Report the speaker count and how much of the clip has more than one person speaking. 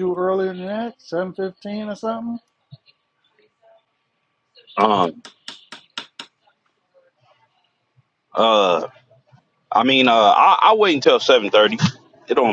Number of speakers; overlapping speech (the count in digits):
2, no overlap